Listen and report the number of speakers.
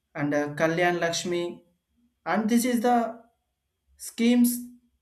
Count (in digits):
1